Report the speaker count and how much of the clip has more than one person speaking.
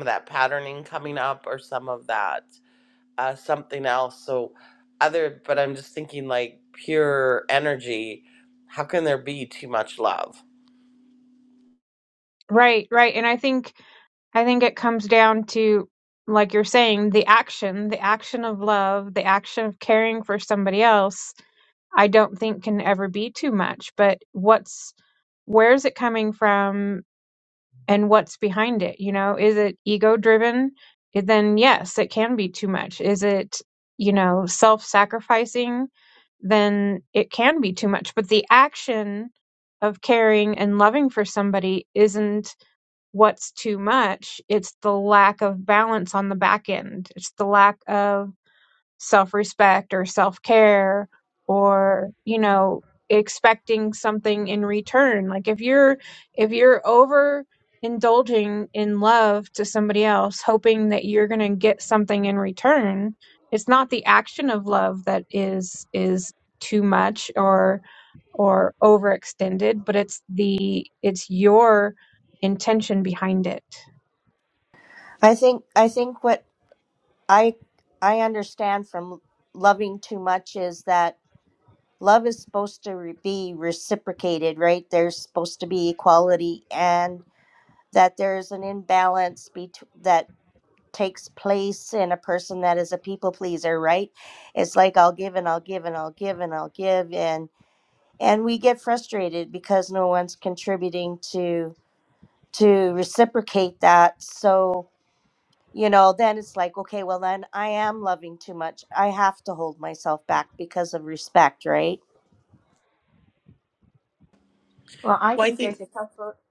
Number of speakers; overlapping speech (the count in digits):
4, under 1%